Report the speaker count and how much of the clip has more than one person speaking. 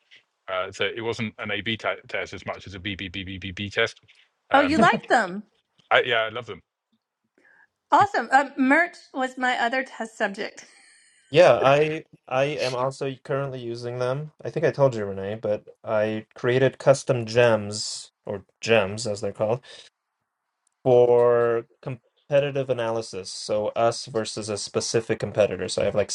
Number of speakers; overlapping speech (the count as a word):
three, about 1%